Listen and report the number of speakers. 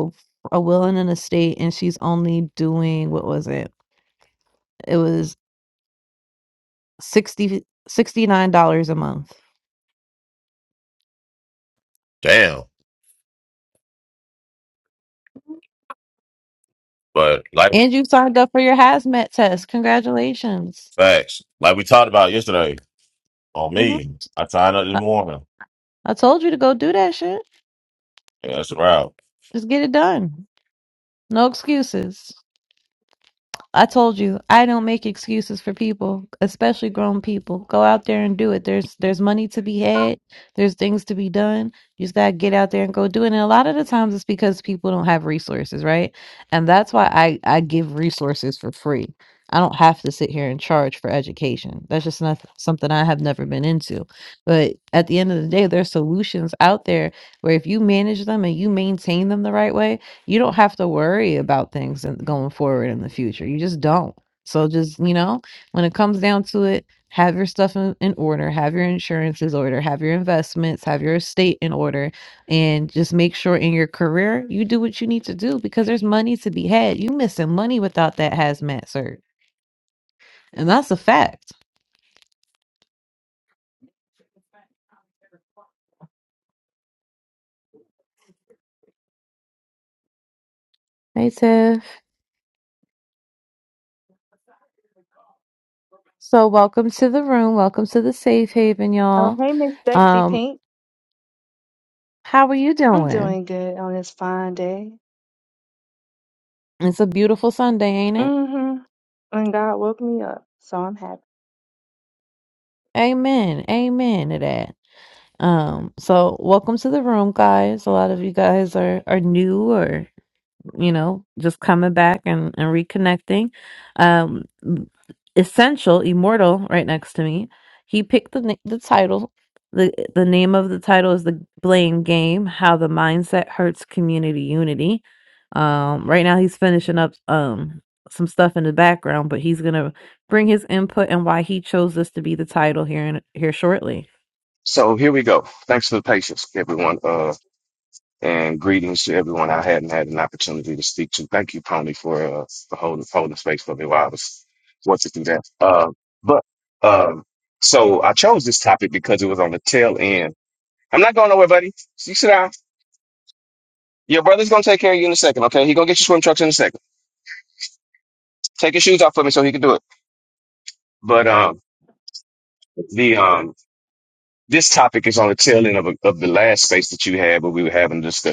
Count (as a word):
four